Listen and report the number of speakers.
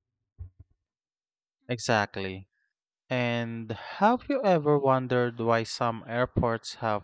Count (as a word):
one